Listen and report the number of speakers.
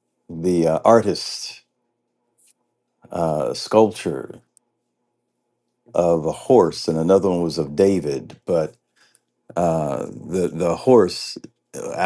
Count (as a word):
one